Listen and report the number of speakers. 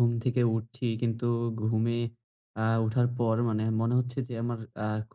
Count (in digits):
1